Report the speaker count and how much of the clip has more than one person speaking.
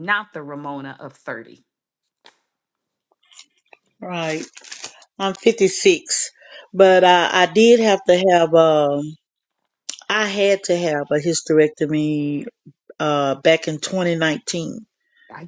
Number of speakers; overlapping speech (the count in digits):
2, no overlap